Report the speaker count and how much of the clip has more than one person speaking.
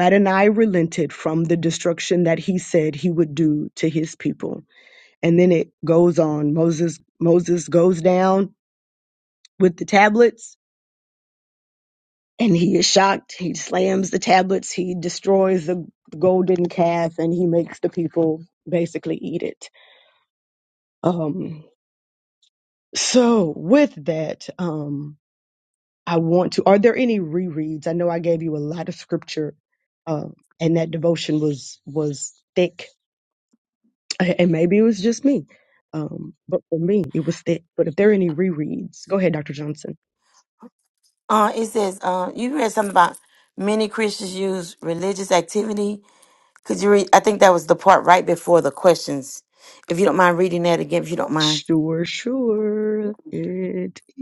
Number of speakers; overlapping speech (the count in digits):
2, under 1%